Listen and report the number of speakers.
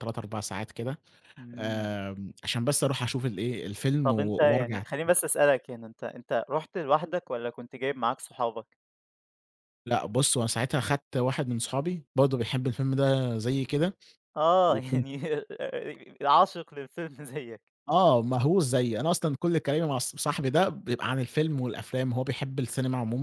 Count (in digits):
2